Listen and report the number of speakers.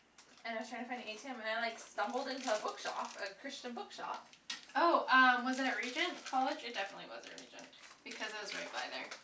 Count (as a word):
two